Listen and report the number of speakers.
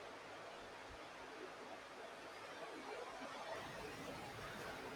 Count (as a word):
zero